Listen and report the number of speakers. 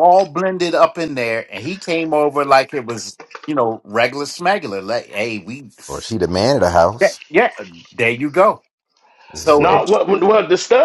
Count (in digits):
3